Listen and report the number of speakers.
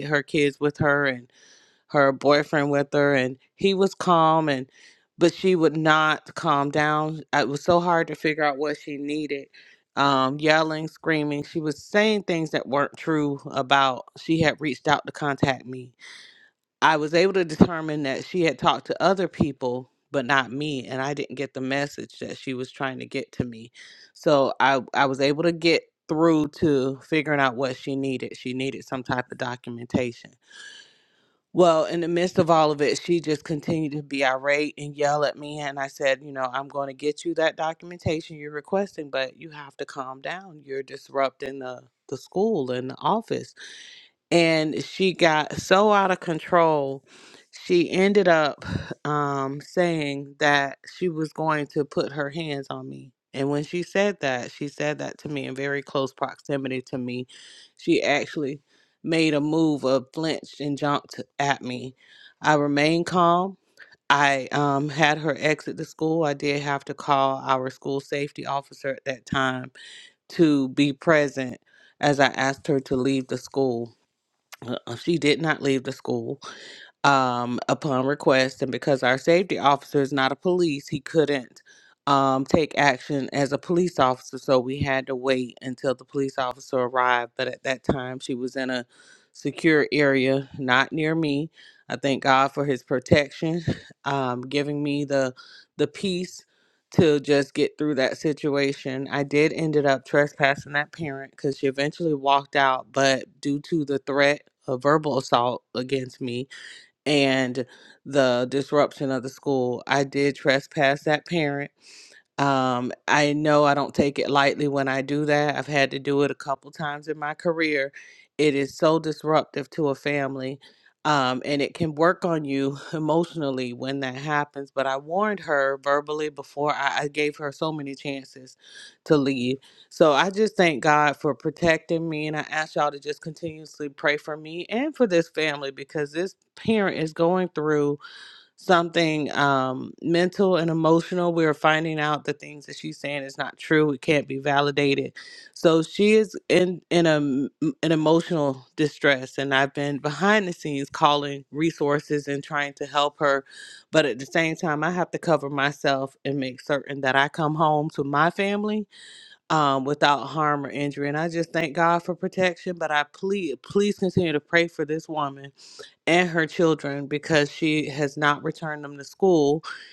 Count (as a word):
one